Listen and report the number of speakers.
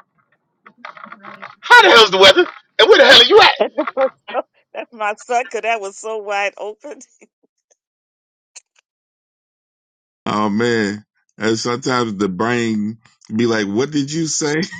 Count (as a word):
three